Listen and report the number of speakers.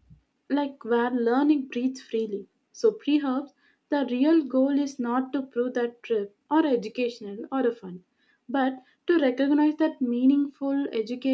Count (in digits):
1